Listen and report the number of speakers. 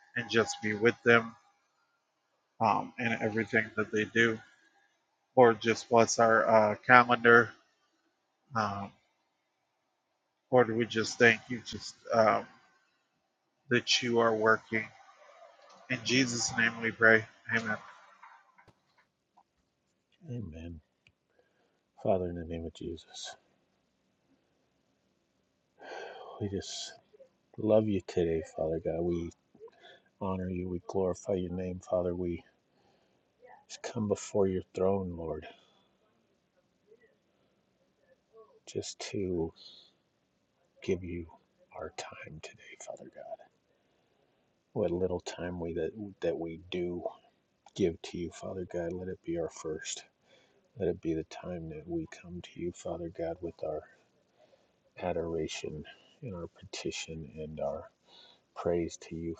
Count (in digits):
2